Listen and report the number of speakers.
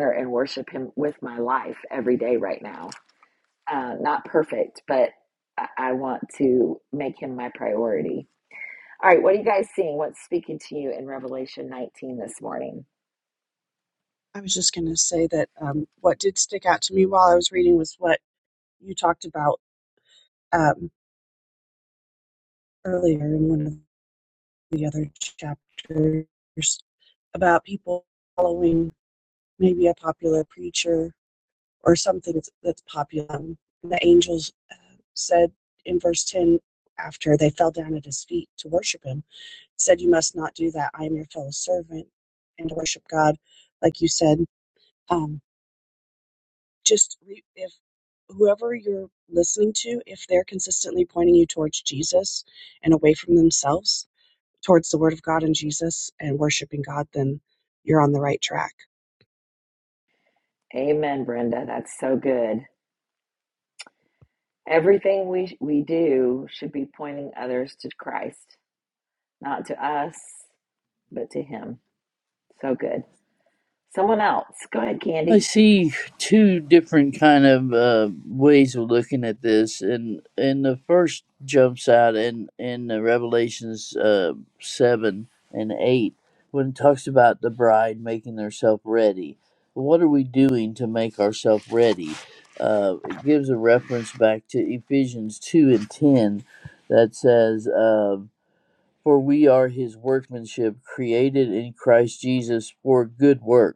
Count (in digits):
3